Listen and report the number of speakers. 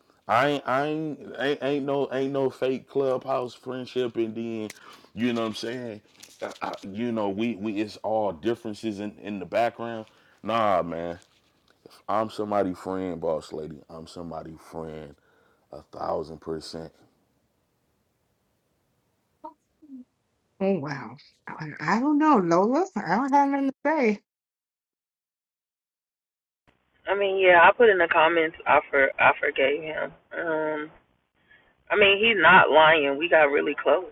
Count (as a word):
three